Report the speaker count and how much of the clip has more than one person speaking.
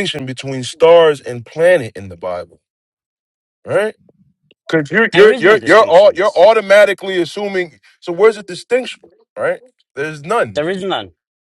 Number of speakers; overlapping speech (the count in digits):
2, about 9%